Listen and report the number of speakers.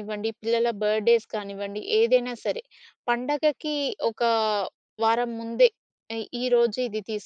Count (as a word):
one